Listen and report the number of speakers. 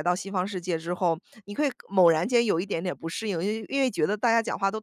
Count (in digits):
1